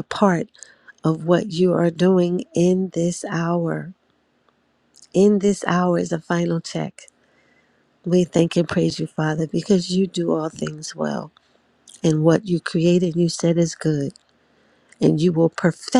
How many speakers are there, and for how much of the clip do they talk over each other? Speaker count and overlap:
1, no overlap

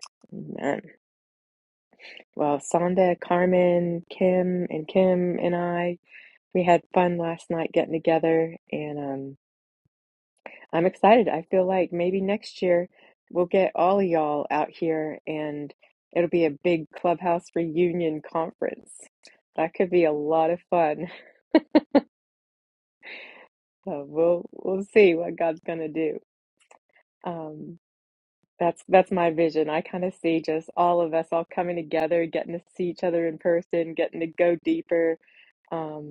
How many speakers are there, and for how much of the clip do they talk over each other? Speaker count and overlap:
1, no overlap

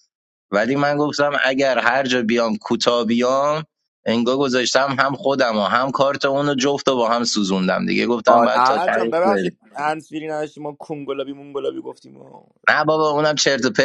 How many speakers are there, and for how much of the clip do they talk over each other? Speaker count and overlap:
2, about 9%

